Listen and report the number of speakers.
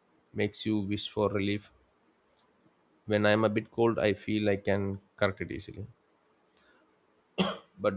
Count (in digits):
1